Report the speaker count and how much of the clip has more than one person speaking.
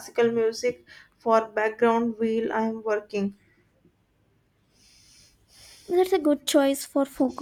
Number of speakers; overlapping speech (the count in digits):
2, no overlap